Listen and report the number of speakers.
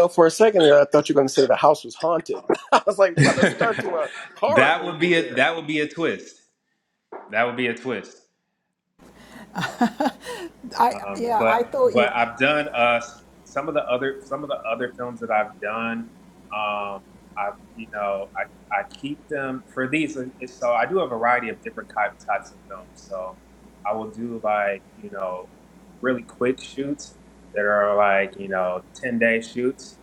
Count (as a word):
three